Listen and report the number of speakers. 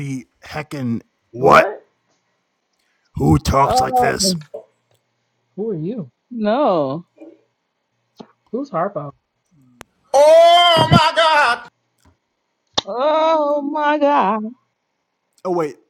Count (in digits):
3